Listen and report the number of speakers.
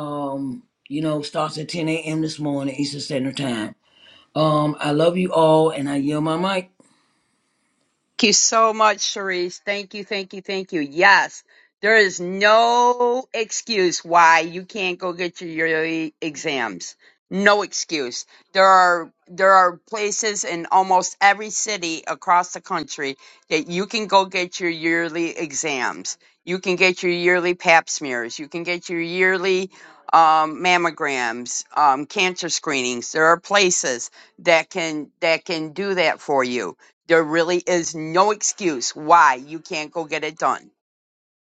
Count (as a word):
two